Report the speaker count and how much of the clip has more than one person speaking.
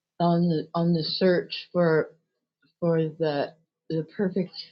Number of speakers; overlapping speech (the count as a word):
one, no overlap